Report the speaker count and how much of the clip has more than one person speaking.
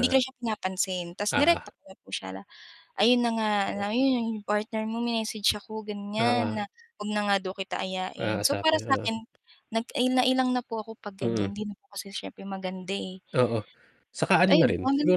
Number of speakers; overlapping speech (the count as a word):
two, about 18%